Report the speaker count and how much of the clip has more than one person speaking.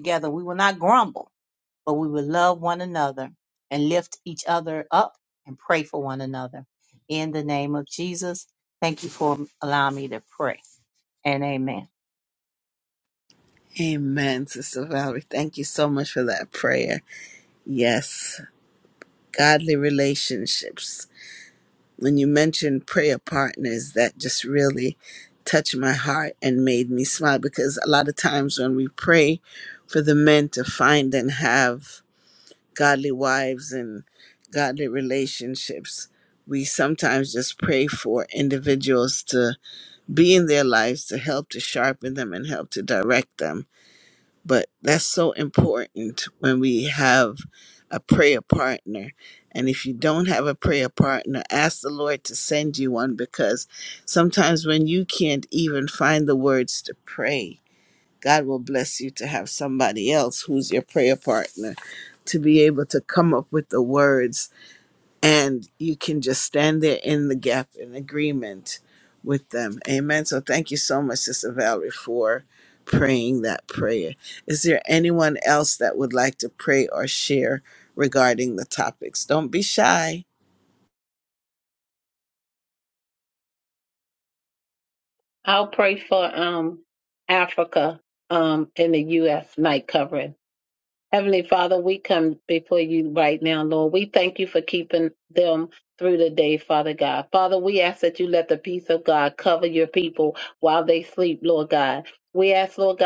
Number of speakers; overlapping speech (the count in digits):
3, no overlap